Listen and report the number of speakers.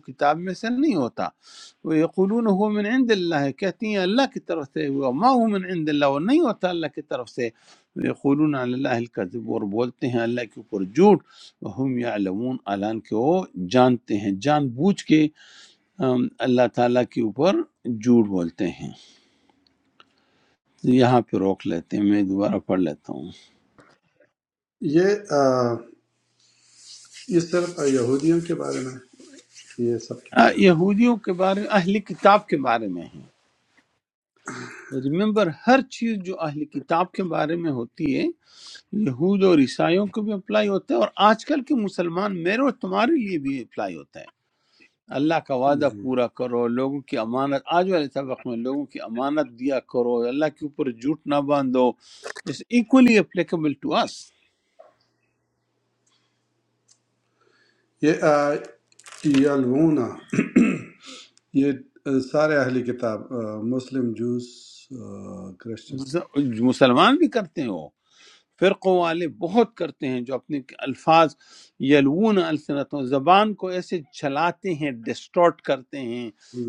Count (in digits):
2